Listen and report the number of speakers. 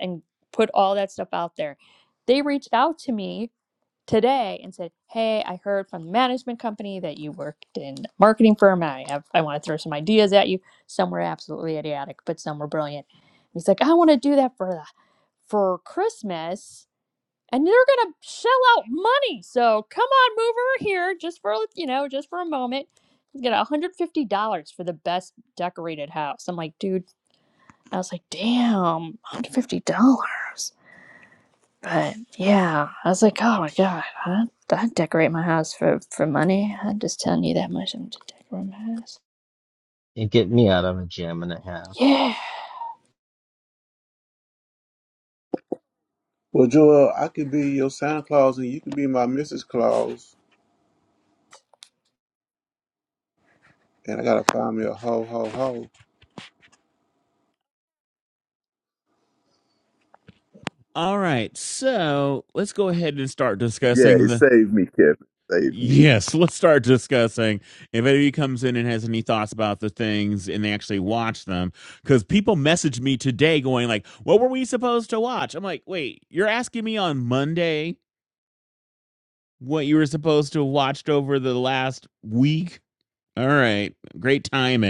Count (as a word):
four